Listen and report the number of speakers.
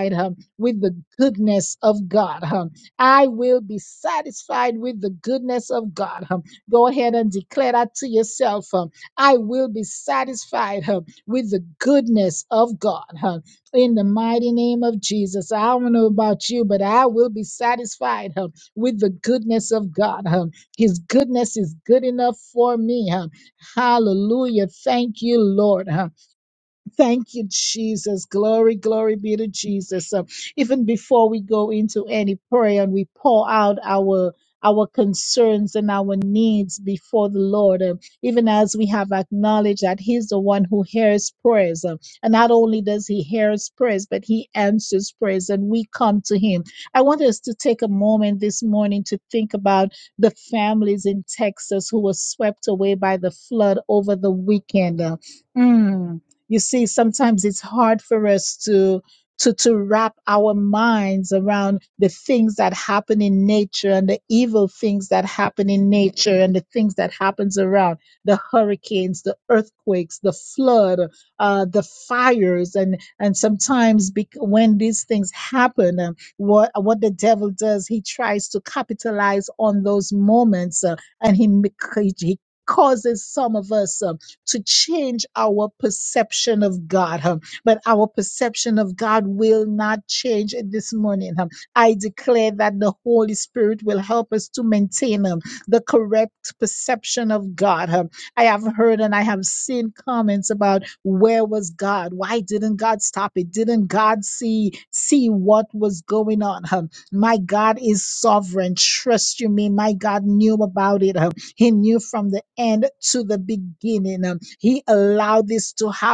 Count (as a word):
one